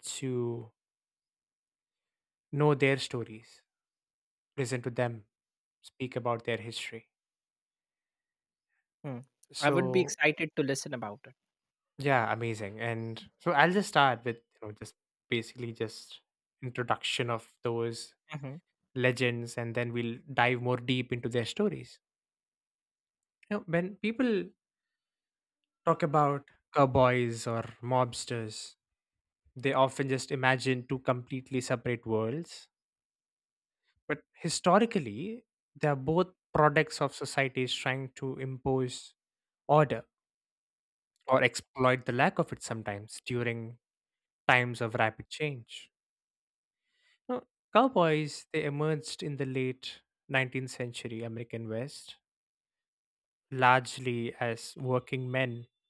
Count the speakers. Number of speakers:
2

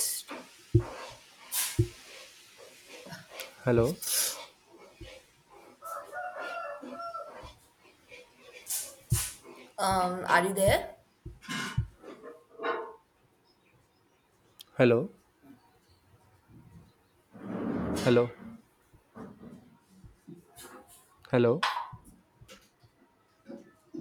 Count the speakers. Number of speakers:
2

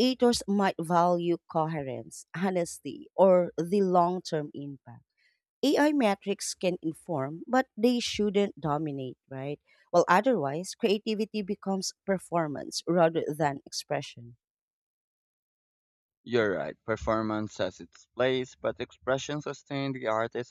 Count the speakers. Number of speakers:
2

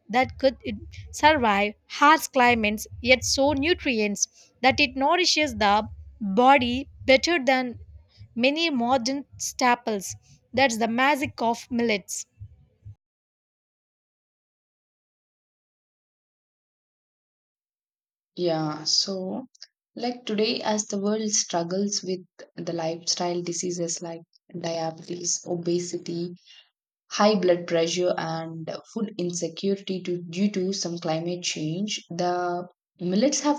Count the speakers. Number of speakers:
2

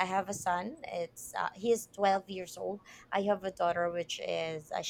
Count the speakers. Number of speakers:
1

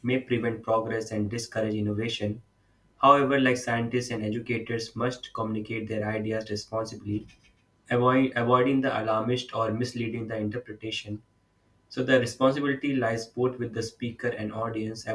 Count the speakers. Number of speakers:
1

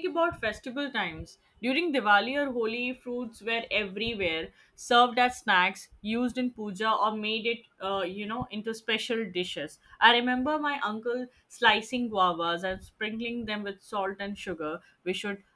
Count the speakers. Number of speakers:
1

